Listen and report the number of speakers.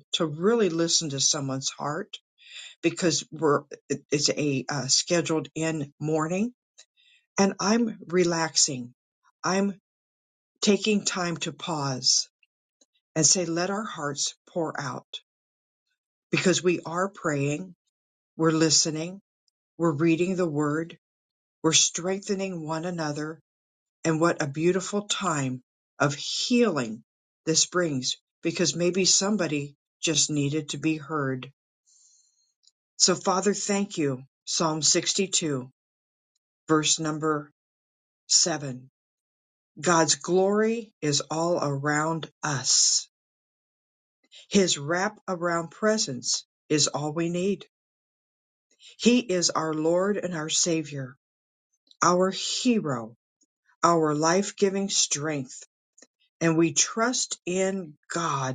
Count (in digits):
1